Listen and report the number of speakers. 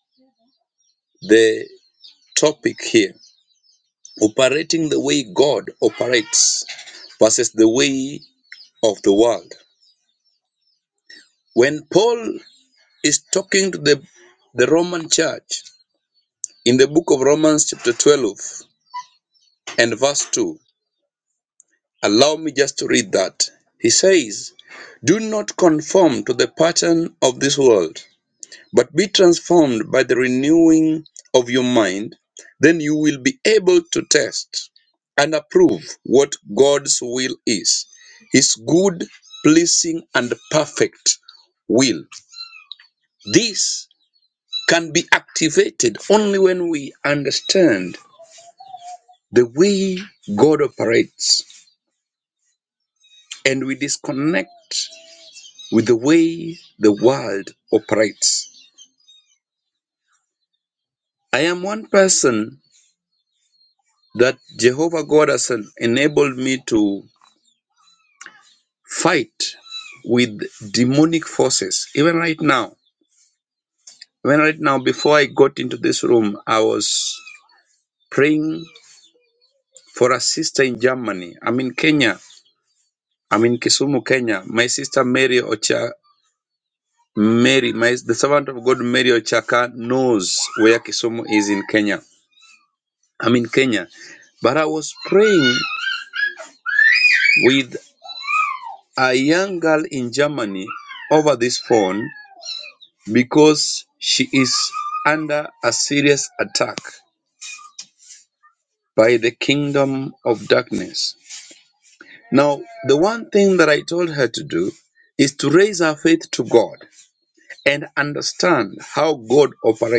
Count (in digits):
1